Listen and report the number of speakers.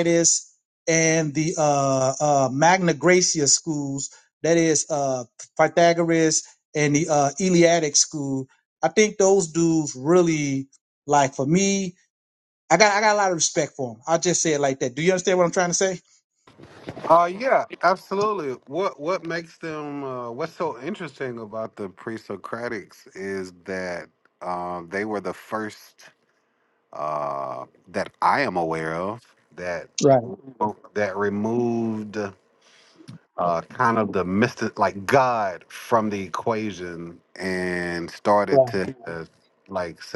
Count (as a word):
two